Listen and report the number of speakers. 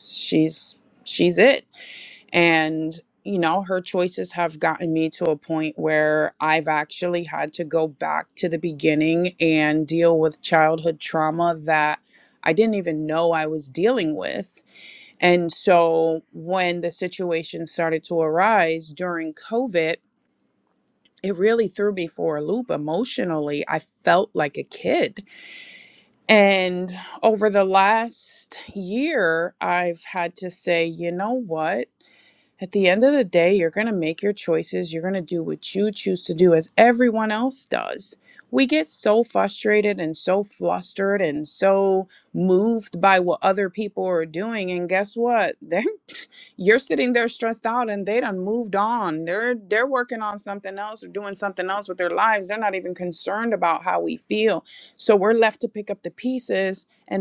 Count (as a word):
one